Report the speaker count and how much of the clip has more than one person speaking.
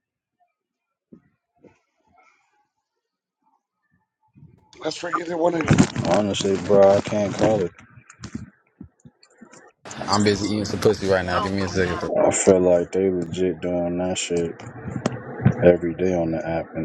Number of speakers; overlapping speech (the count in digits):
3, no overlap